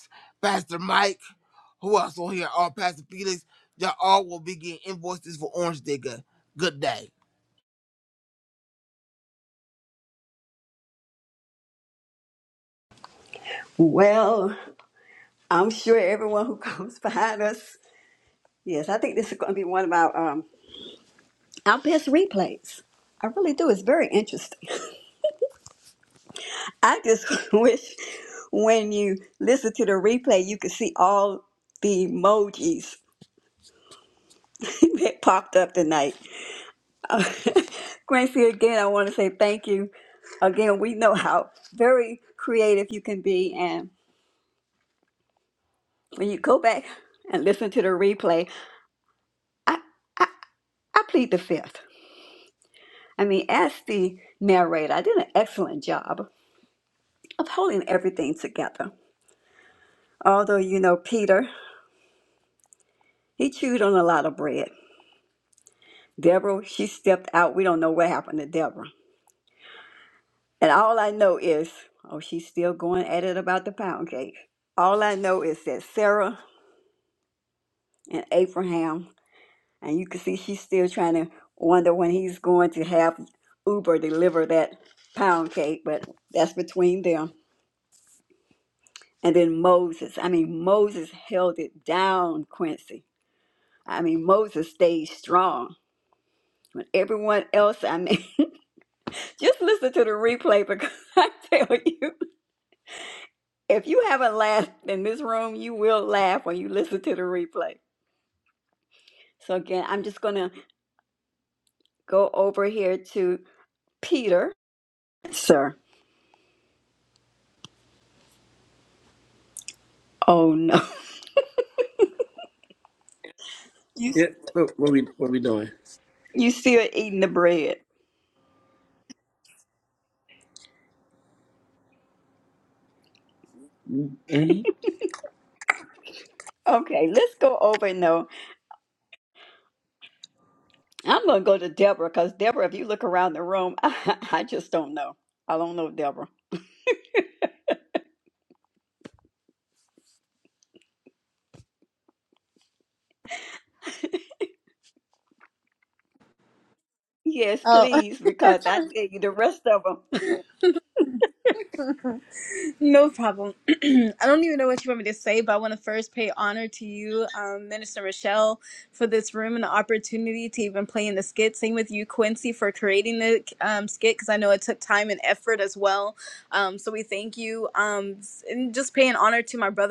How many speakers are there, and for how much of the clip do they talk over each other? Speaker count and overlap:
four, under 1%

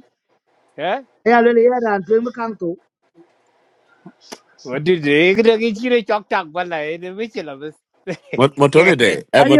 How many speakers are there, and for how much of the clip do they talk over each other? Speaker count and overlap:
three, about 2%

